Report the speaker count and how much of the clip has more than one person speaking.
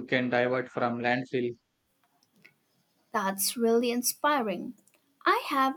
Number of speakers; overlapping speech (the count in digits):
2, no overlap